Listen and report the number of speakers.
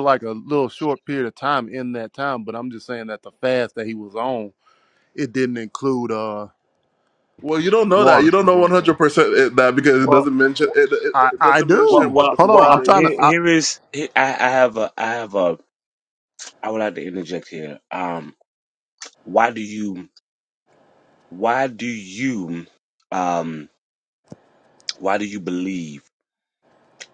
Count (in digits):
3